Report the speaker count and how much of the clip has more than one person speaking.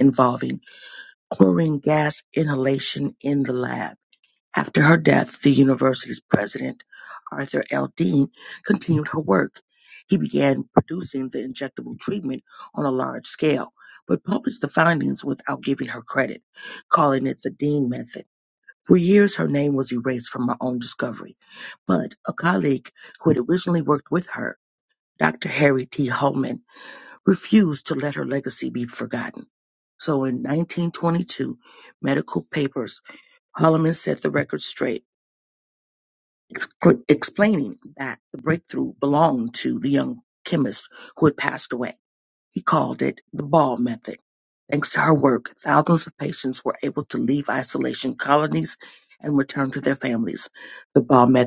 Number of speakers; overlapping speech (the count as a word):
one, no overlap